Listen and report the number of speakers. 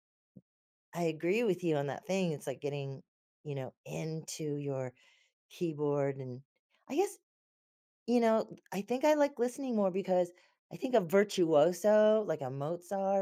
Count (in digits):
1